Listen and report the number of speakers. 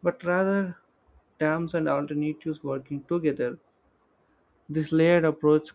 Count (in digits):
1